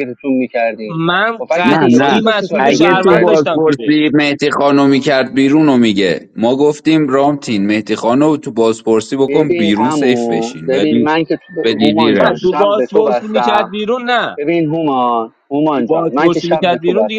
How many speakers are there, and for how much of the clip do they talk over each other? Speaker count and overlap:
3, about 46%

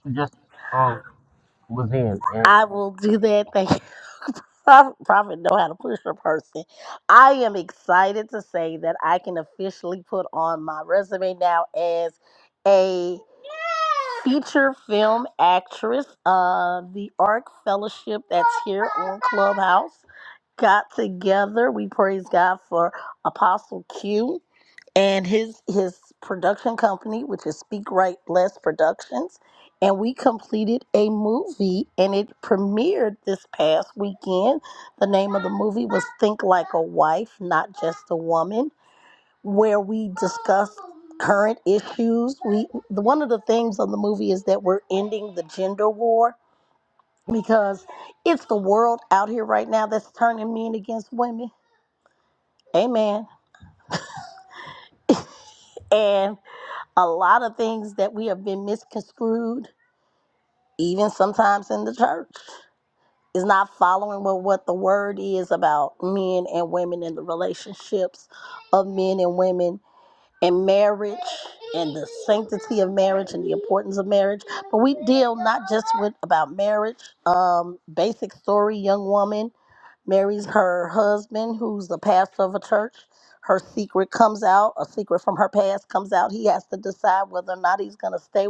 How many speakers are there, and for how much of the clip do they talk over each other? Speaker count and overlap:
2, no overlap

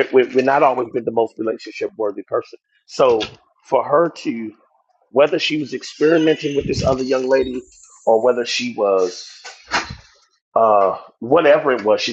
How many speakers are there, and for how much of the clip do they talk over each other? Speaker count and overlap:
1, no overlap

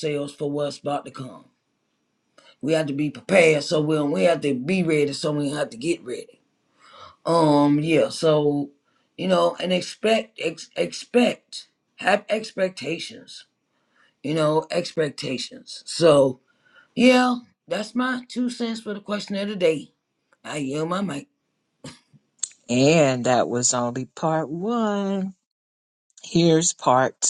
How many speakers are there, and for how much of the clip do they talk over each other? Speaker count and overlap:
2, no overlap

